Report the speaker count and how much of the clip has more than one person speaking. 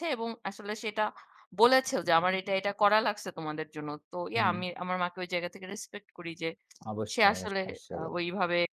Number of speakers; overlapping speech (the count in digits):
2, about 14%